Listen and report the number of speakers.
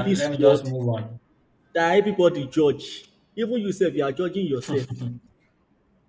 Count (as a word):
two